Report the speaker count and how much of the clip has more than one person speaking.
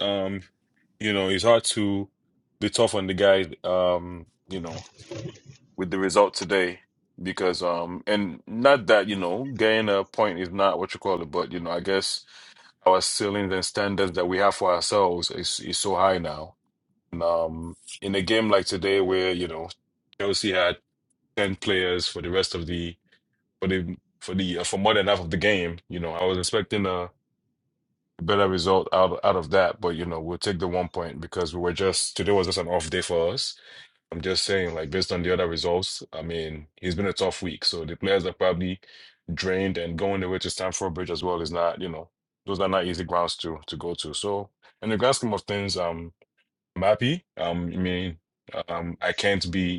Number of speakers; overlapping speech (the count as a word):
one, no overlap